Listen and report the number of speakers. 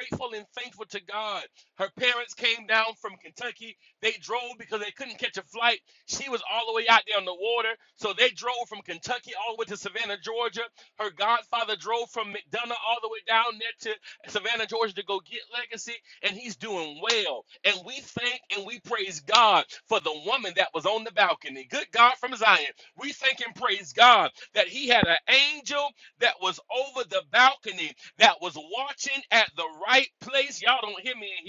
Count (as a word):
one